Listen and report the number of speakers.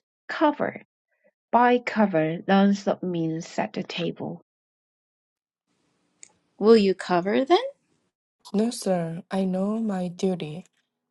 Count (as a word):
three